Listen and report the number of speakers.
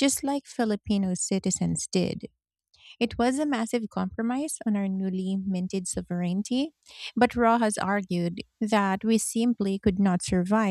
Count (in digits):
1